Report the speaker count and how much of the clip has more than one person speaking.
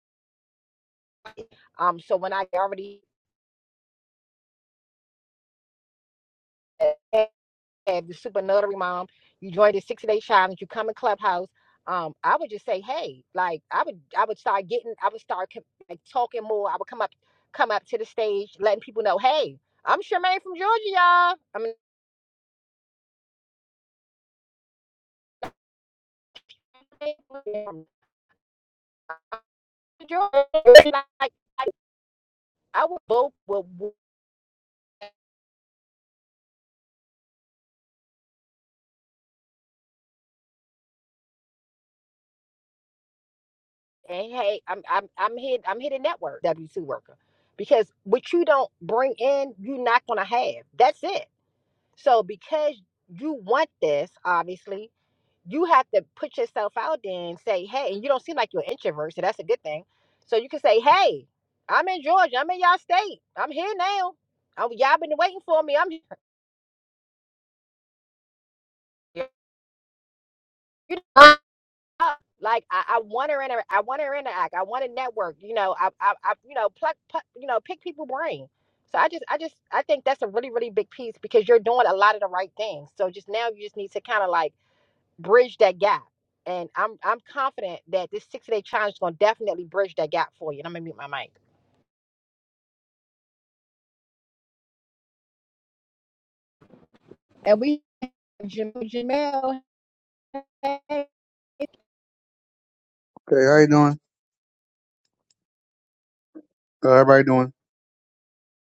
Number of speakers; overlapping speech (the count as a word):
two, no overlap